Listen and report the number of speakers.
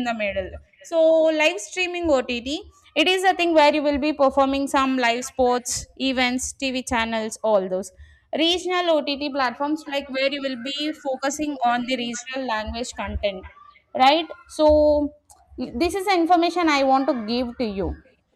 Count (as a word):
one